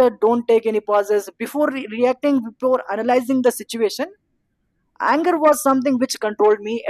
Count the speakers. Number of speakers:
one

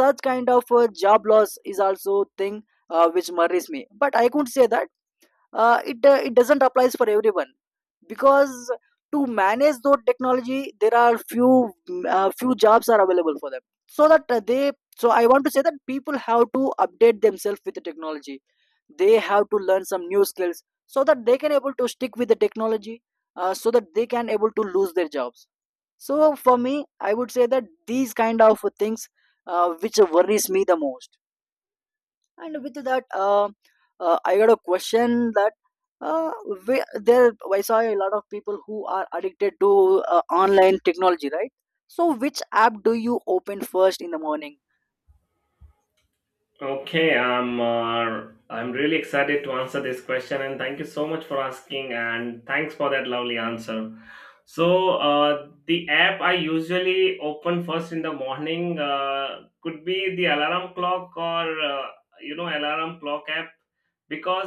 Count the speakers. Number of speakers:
two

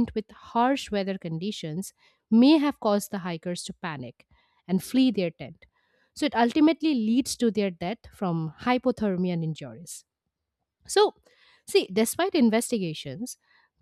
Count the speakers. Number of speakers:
one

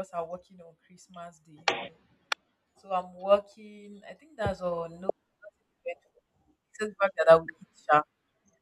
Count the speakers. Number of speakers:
one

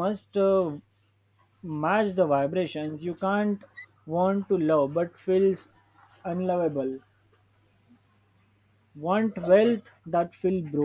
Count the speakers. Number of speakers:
one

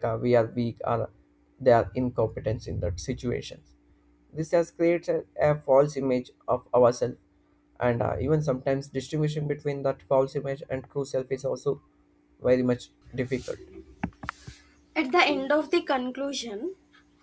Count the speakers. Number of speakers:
two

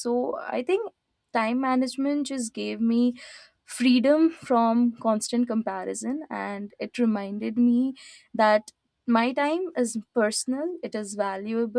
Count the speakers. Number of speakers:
one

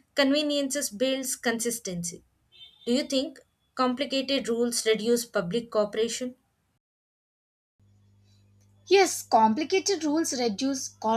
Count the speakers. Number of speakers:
two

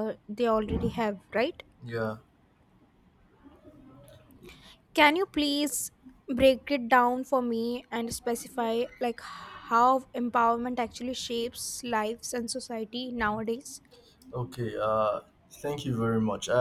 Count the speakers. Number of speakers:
two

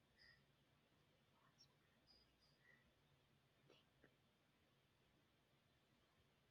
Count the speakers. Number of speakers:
zero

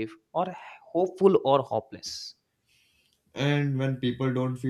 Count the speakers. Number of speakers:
two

